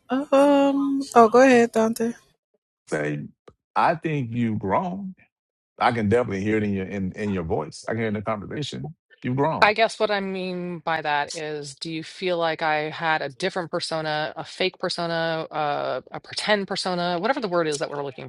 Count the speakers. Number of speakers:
3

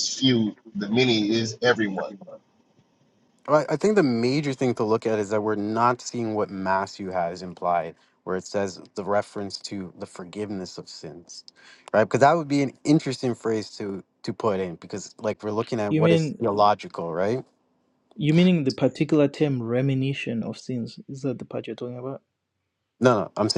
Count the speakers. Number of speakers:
3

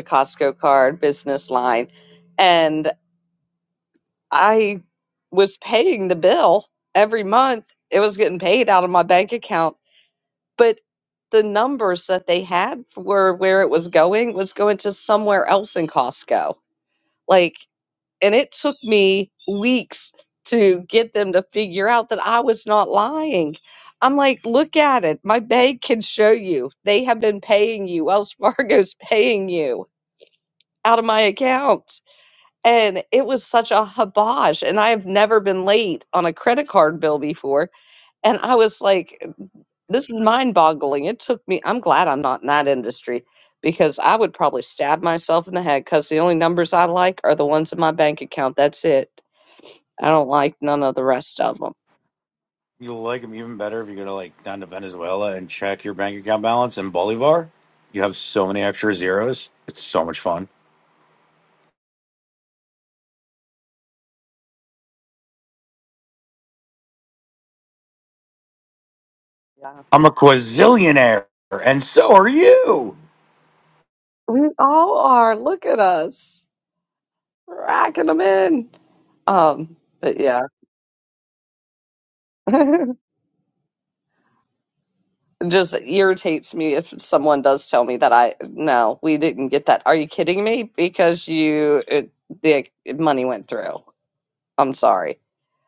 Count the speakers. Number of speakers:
2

